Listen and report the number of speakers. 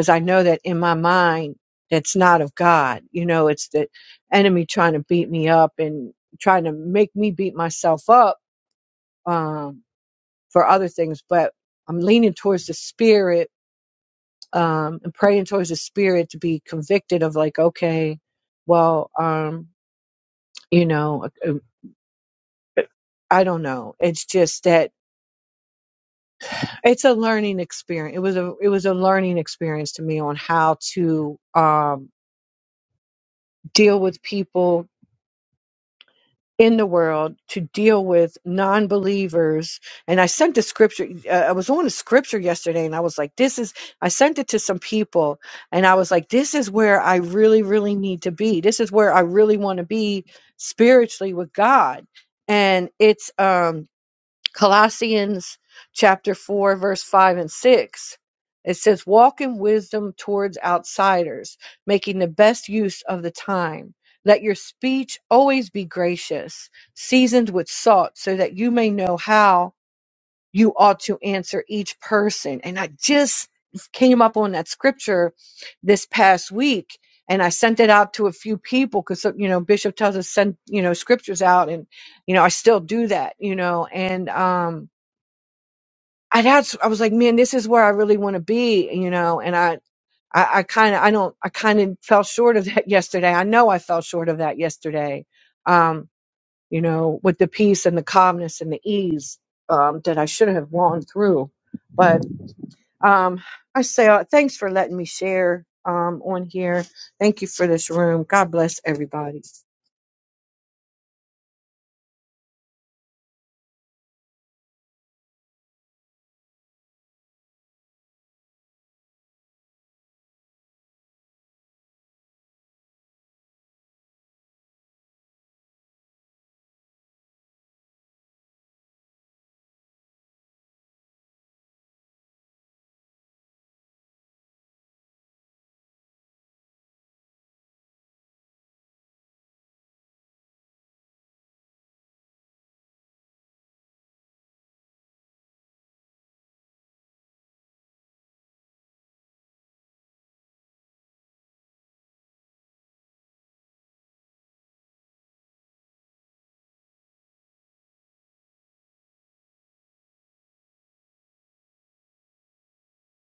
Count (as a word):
one